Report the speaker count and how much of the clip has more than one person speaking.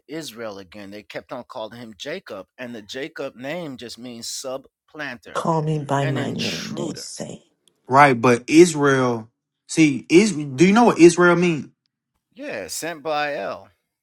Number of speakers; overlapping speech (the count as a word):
three, about 7%